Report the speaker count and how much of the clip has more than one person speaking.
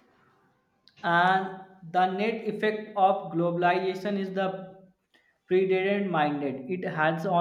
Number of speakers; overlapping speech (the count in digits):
1, no overlap